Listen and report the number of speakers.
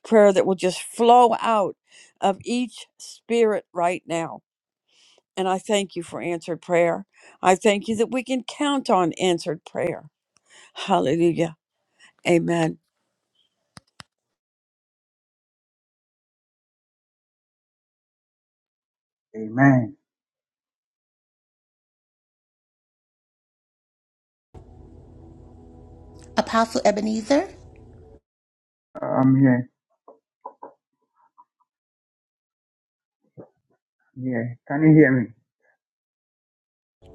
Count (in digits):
3